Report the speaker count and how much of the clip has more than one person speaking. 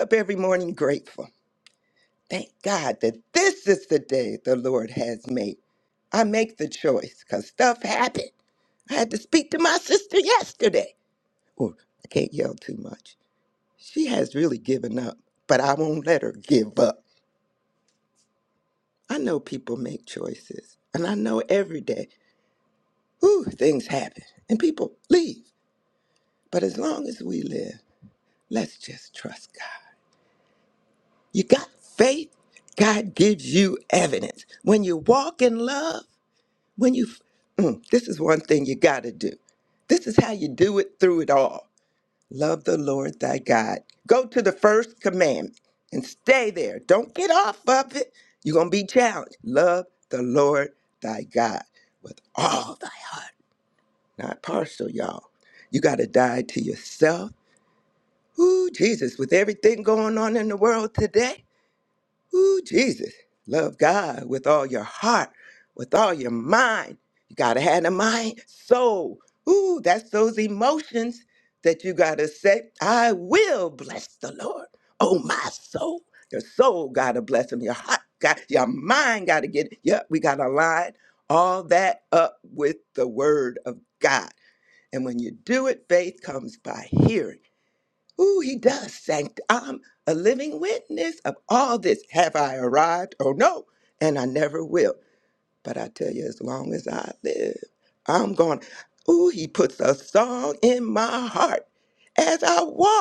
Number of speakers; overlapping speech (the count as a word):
one, no overlap